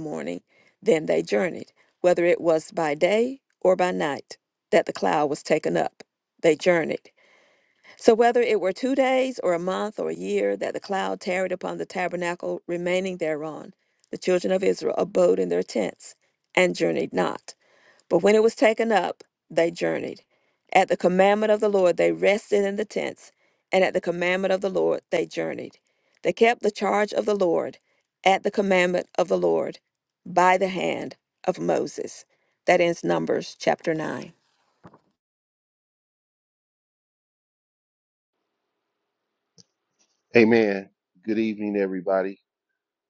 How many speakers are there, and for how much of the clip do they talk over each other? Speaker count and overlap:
two, no overlap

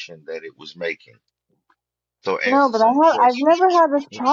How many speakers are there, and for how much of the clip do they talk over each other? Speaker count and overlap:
two, about 31%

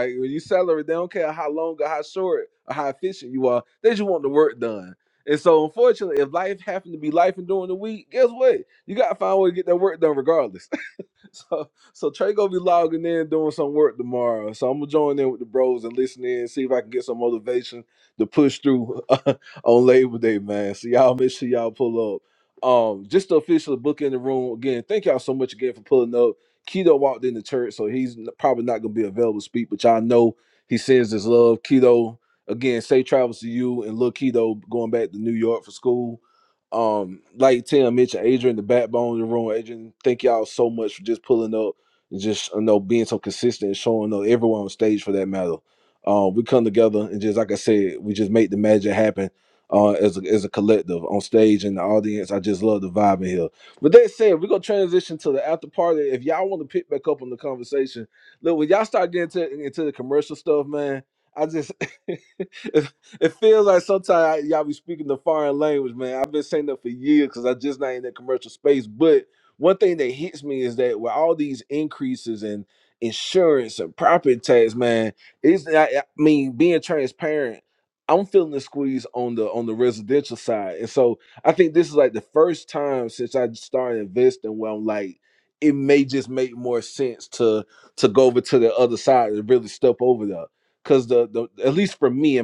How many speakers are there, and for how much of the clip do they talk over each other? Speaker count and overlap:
one, no overlap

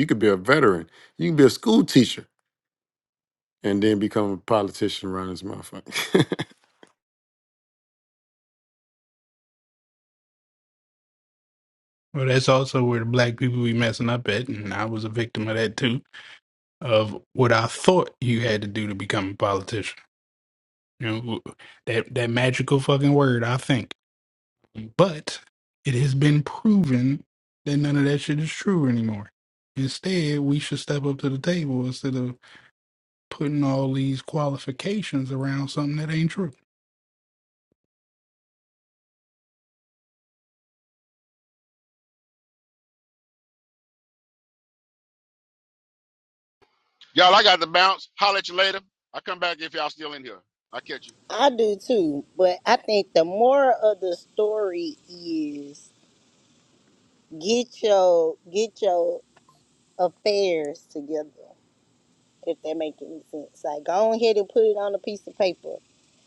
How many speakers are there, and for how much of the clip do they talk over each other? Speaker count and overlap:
four, no overlap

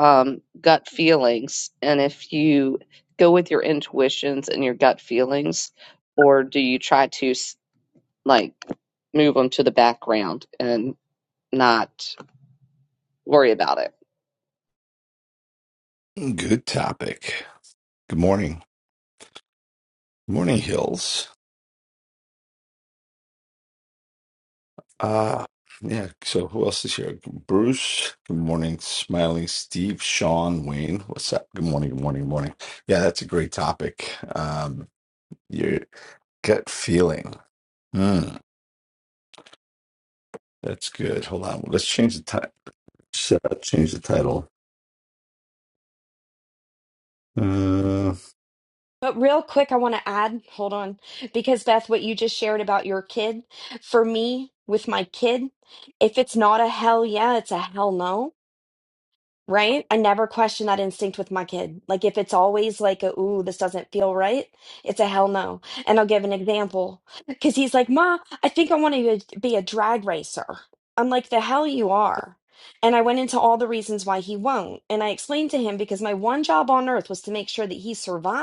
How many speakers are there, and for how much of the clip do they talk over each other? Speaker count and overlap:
three, no overlap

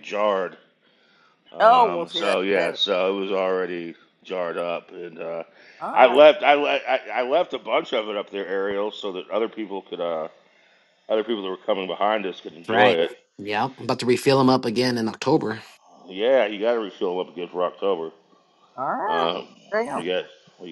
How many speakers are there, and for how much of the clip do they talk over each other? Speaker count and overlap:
three, about 10%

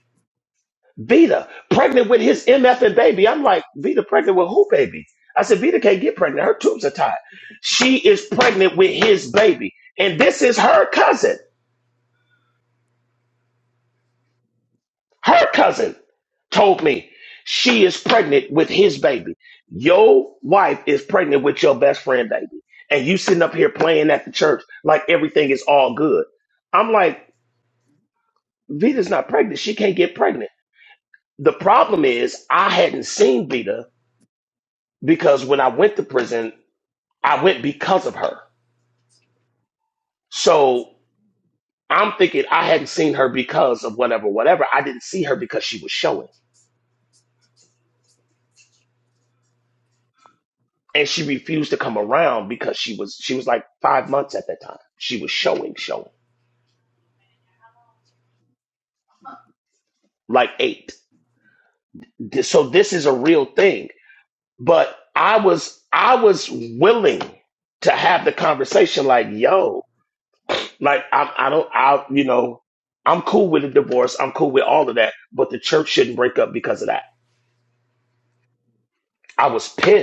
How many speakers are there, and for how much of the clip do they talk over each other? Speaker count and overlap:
one, no overlap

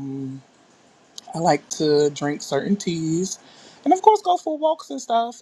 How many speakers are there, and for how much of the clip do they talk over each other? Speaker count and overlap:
one, no overlap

